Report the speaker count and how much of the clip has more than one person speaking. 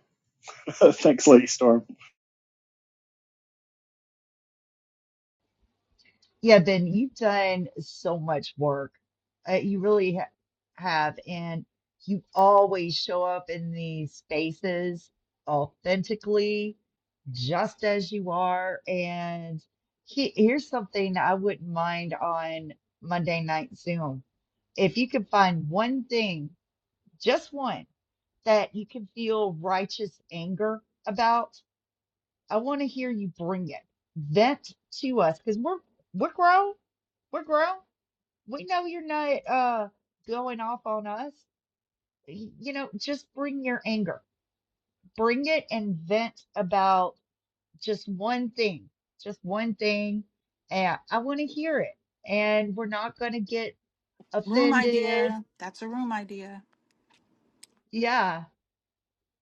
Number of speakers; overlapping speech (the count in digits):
3, about 1%